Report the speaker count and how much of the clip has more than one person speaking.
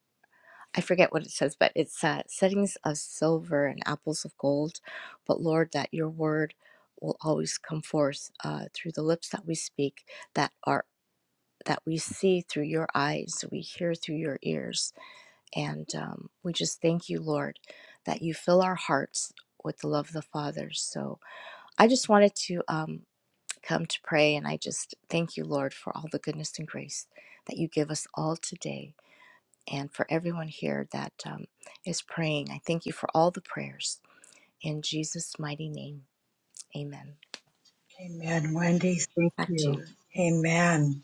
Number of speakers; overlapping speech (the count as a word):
two, about 1%